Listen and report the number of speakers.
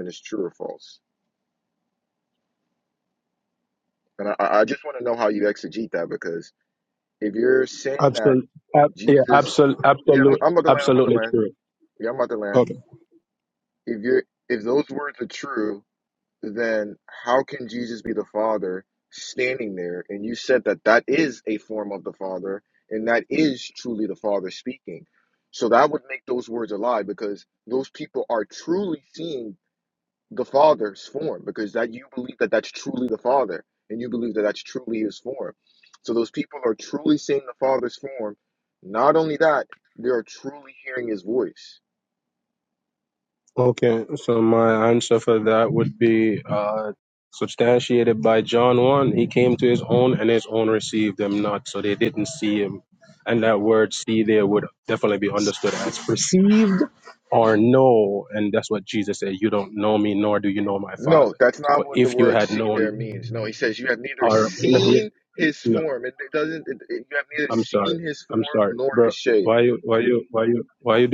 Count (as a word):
two